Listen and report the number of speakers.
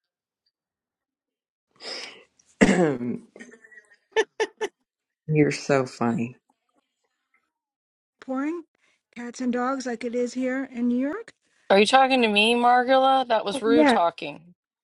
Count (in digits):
3